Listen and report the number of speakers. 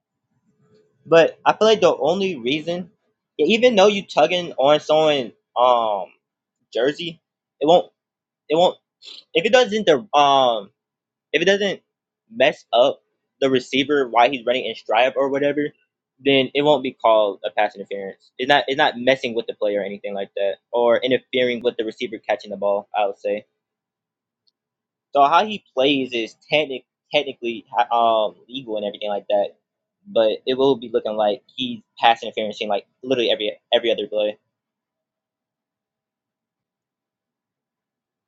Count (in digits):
1